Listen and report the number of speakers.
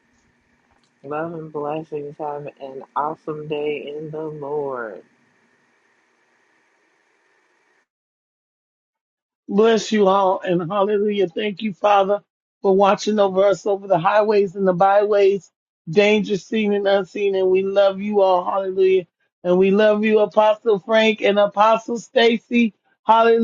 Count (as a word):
two